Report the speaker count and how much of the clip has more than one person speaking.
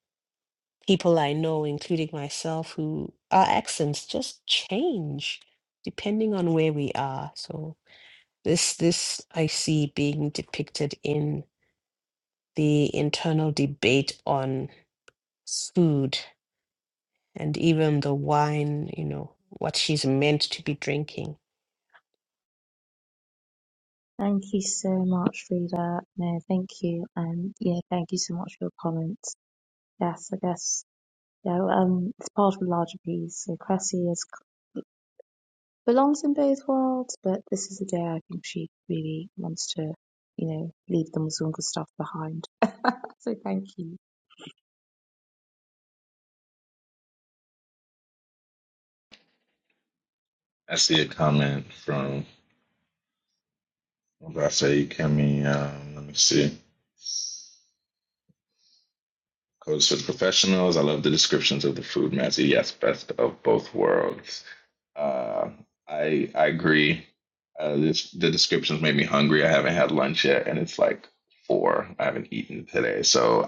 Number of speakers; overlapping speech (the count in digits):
3, no overlap